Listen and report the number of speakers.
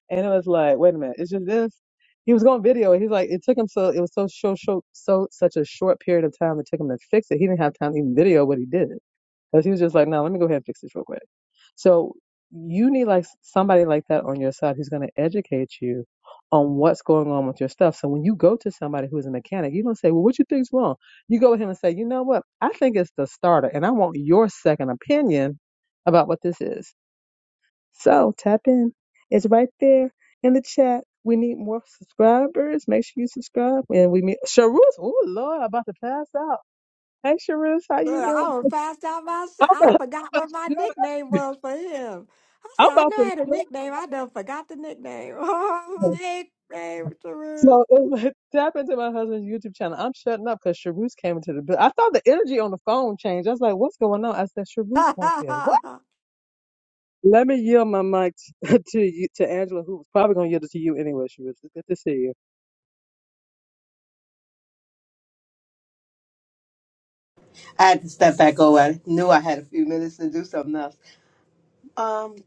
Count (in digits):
3